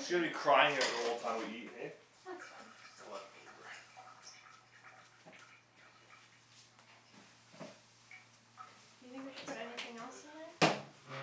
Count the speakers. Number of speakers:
three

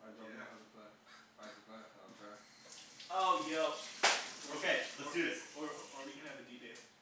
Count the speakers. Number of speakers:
three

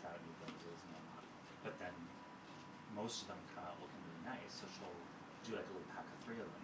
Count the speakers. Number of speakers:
one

